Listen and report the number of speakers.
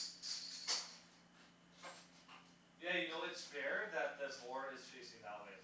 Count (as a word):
one